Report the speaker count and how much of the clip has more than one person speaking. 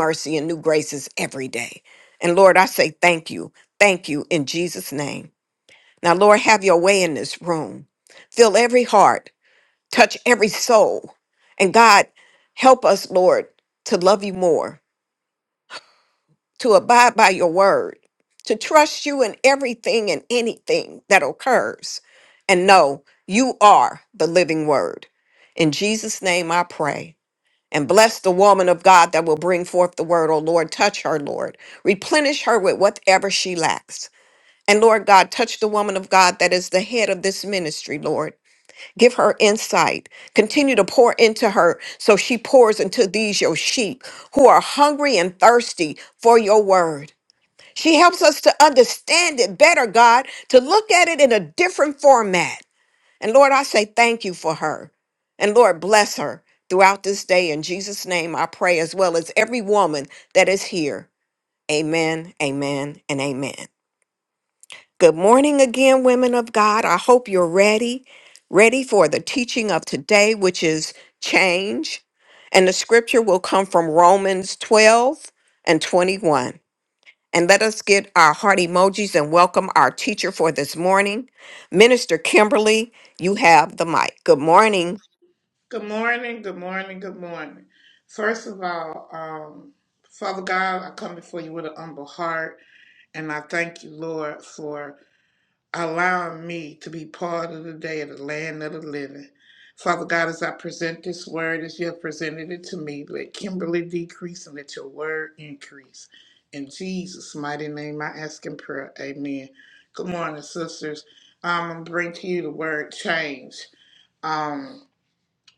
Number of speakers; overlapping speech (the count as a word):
two, no overlap